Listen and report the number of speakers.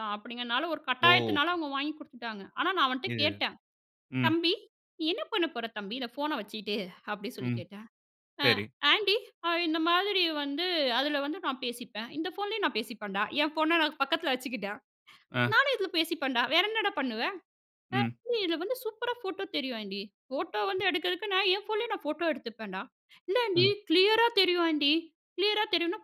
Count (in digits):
2